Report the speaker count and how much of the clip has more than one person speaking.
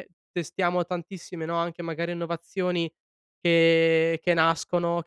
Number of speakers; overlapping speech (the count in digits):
1, no overlap